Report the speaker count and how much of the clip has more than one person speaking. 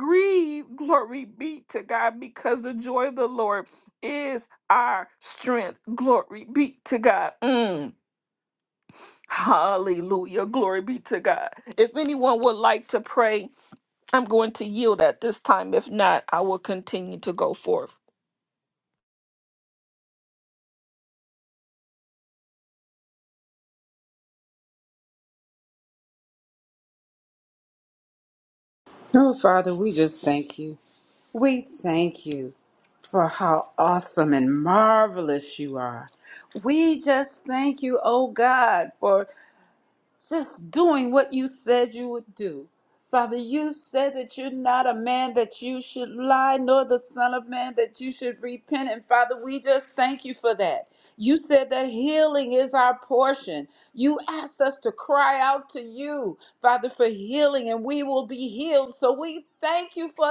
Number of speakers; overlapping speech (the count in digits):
2, no overlap